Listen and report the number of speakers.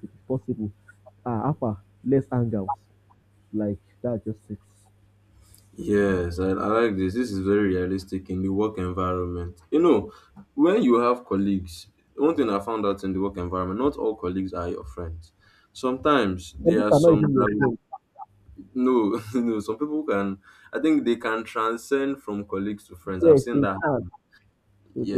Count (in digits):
2